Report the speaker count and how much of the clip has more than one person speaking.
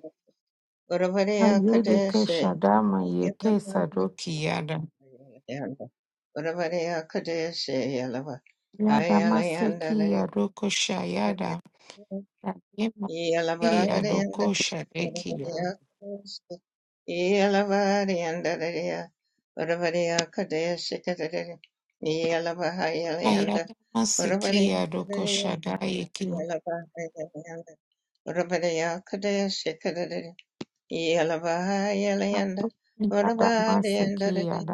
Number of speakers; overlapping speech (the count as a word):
two, about 18%